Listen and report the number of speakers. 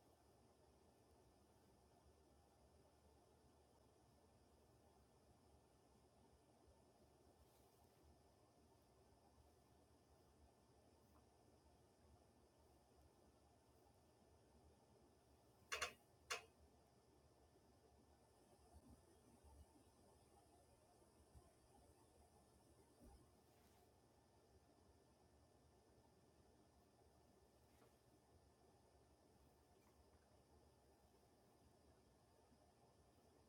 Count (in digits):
0